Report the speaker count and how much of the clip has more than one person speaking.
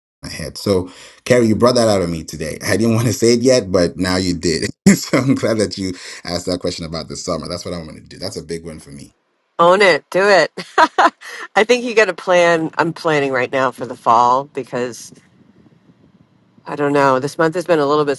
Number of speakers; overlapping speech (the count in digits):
2, no overlap